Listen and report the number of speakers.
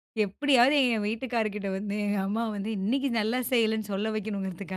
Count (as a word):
one